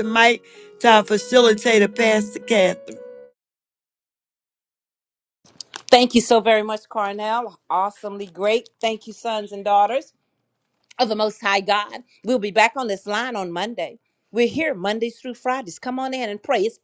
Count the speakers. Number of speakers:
two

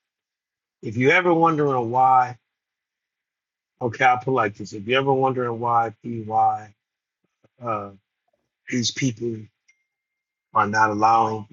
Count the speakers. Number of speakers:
one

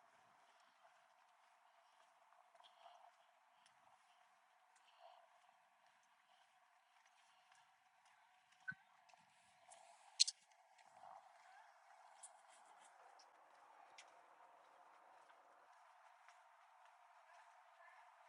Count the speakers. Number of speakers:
zero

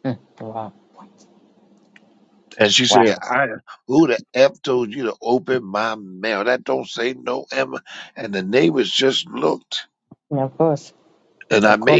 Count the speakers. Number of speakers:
two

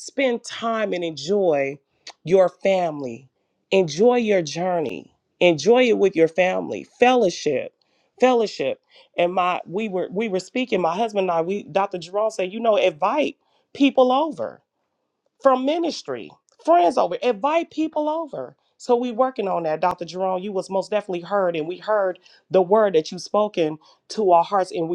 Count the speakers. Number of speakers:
one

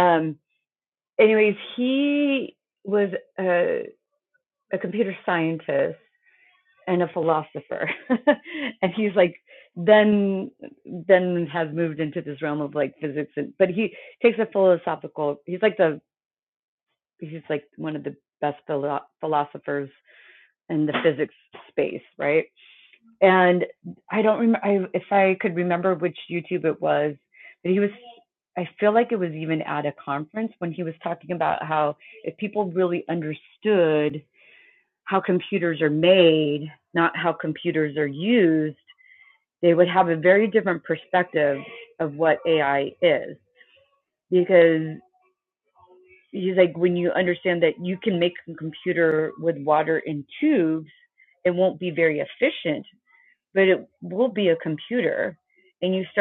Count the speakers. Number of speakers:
one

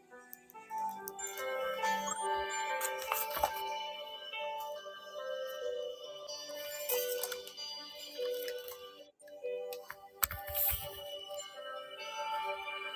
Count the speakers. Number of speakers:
zero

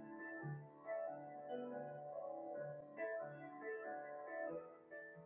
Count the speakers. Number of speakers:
zero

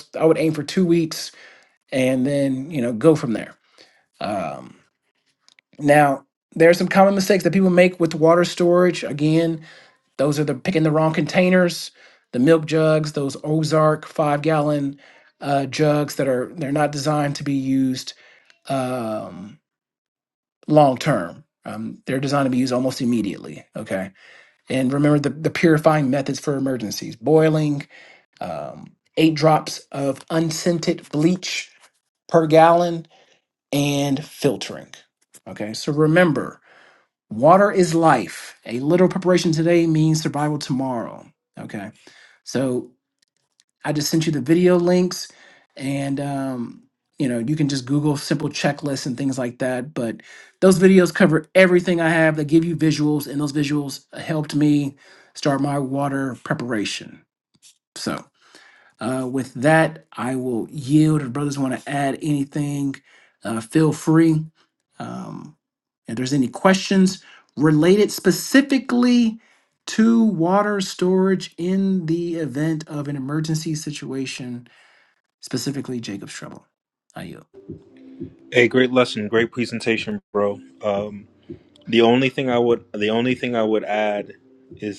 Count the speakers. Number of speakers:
two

